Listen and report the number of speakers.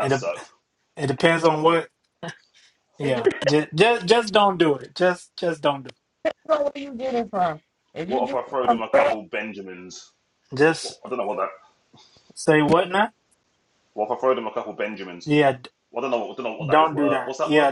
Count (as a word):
three